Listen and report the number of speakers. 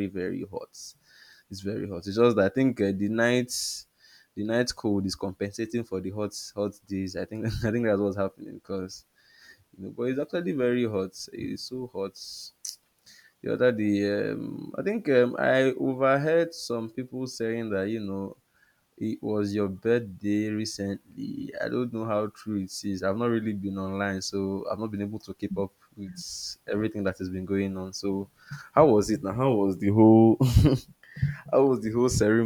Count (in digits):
1